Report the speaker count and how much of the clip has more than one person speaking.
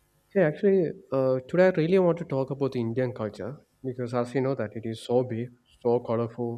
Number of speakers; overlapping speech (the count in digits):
1, no overlap